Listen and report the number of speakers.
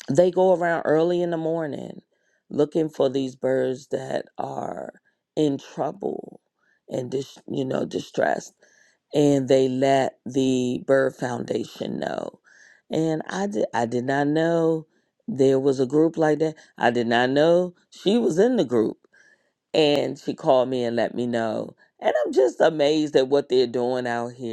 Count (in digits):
1